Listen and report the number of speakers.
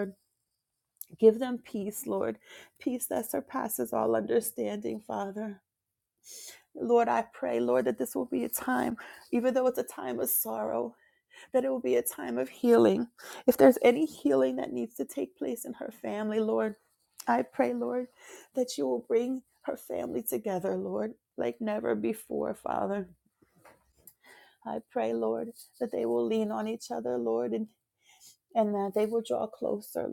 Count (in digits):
1